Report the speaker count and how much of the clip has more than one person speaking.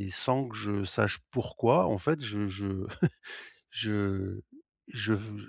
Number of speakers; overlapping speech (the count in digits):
1, no overlap